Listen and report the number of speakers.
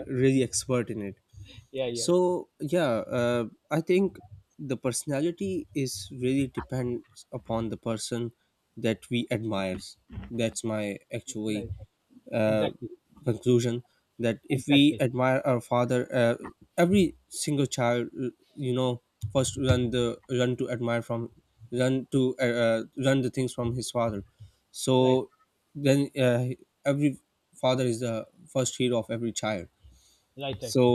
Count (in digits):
2